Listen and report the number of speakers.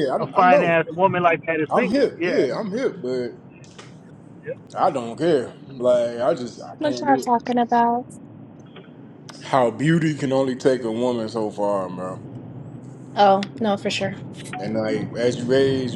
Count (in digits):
3